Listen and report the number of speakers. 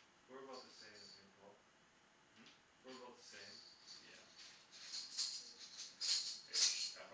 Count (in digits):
2